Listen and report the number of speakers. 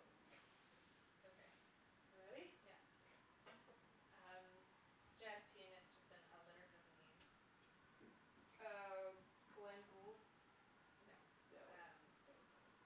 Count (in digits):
2